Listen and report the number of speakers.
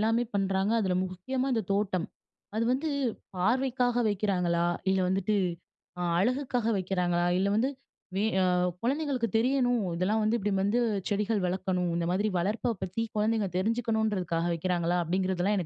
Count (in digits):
1